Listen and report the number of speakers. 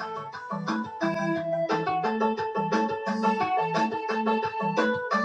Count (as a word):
zero